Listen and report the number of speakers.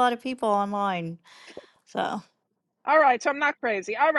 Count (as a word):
two